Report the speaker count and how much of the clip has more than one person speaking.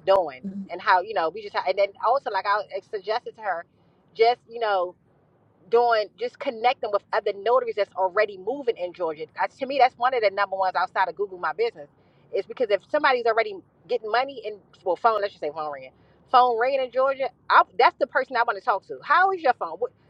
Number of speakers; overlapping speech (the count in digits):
1, no overlap